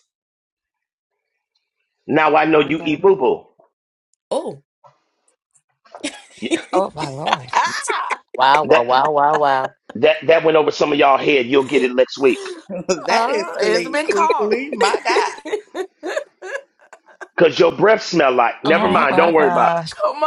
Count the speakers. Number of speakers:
5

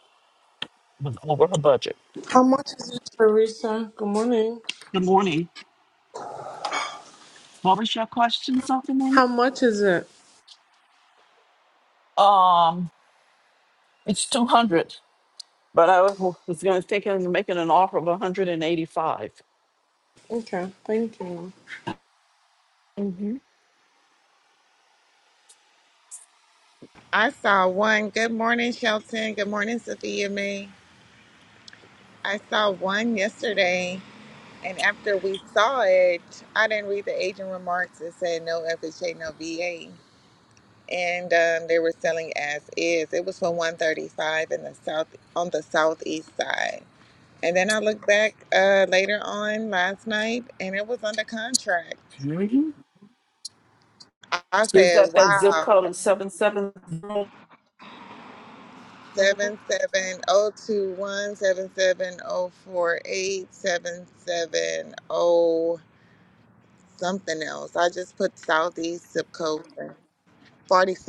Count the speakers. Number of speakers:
3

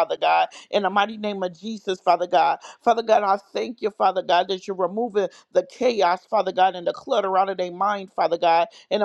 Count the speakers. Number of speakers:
1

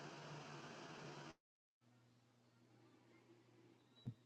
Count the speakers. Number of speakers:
0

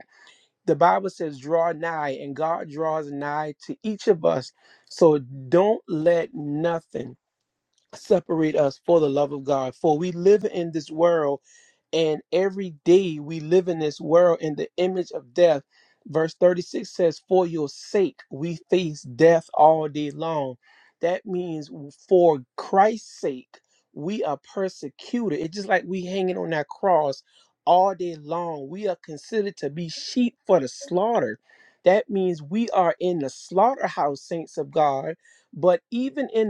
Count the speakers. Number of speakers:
1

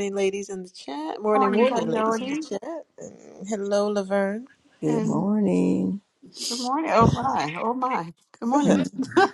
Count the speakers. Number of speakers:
3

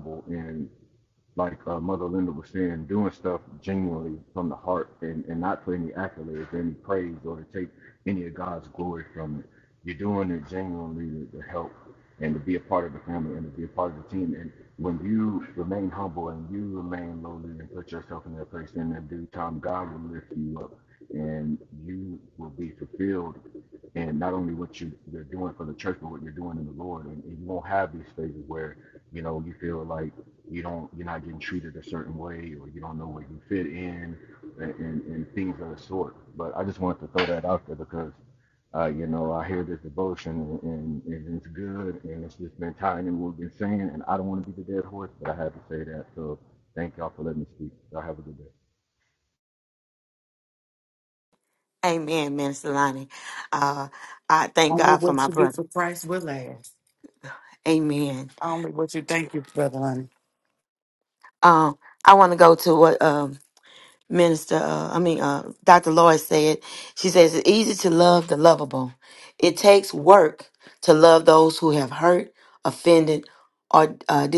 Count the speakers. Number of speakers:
3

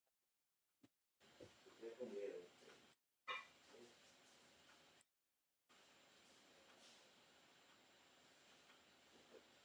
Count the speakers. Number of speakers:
0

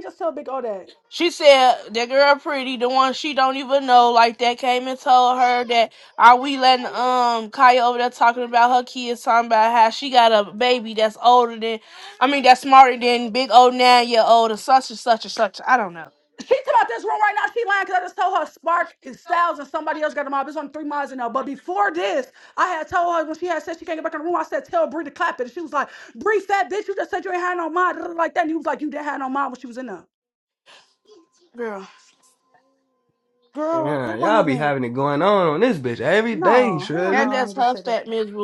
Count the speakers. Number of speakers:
3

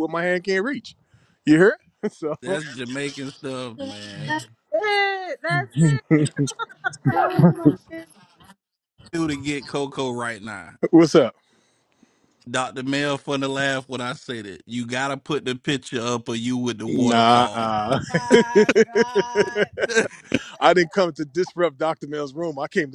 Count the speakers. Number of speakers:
4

